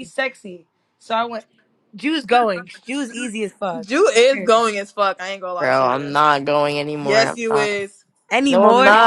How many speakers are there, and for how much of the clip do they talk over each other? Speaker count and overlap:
3, about 24%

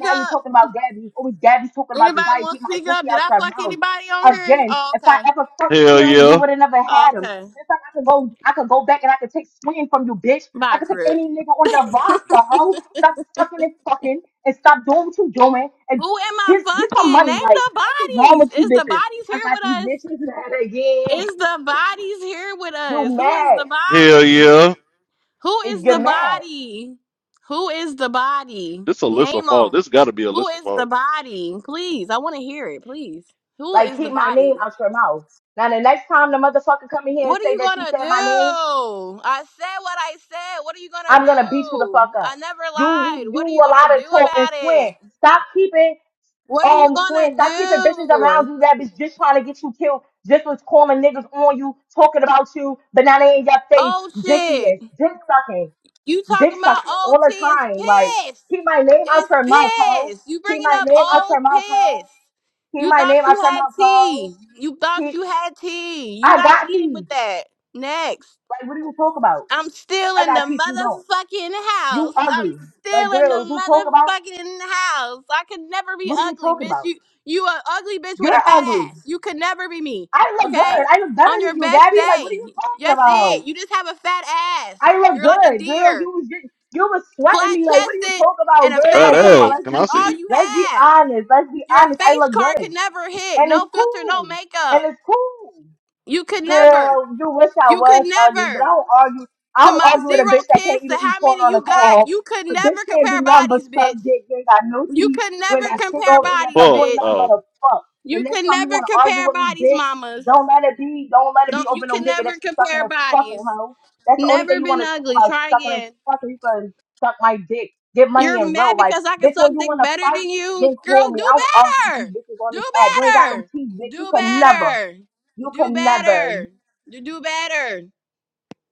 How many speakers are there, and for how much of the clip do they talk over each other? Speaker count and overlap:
3, about 45%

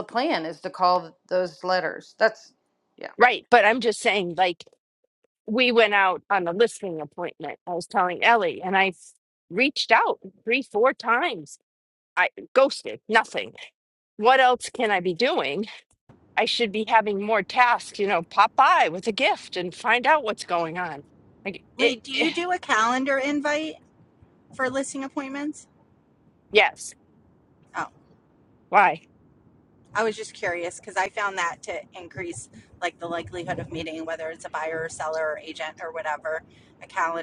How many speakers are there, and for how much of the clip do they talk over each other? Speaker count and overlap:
3, about 2%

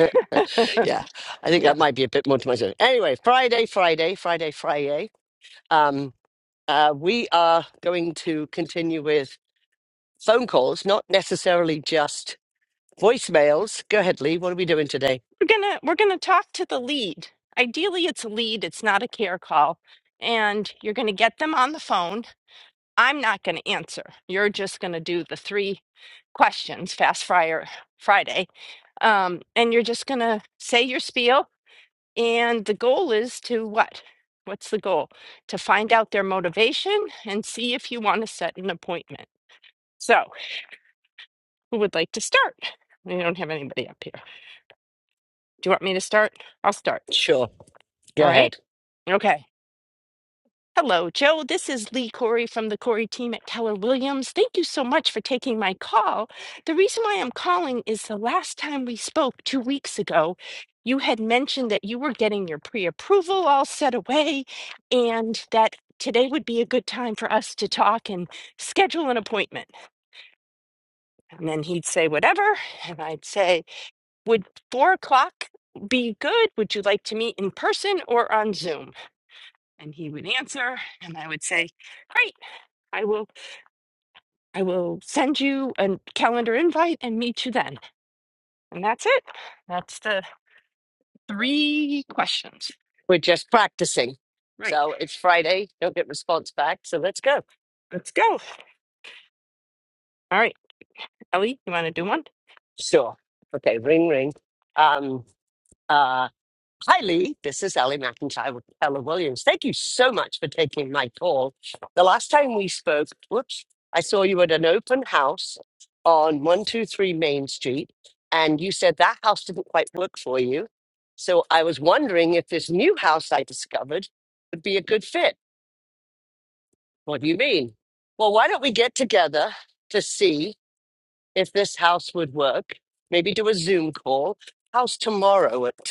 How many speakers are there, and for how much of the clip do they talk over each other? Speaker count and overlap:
2, under 1%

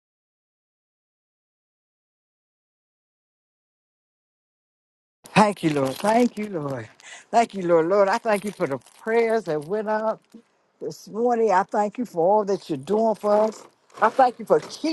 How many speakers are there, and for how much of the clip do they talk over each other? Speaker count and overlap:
1, no overlap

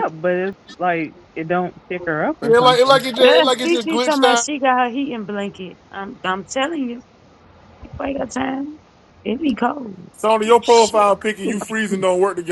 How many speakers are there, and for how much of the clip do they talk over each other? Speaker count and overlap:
3, about 19%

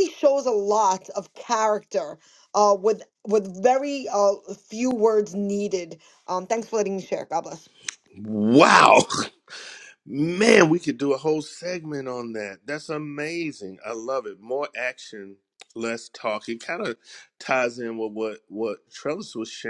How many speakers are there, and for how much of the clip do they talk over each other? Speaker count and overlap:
2, no overlap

